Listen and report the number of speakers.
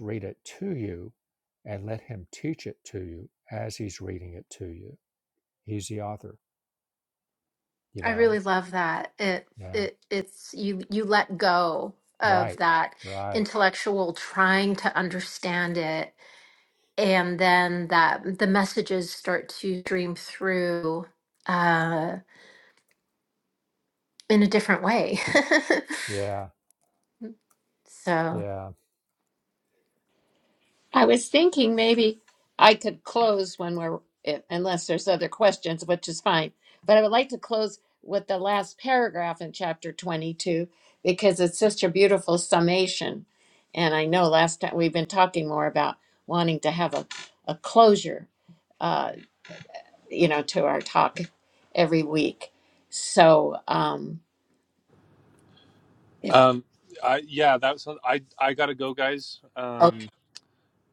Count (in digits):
4